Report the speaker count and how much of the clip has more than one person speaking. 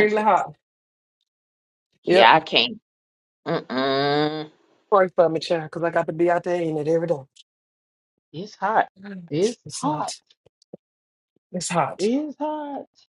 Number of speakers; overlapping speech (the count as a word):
three, about 8%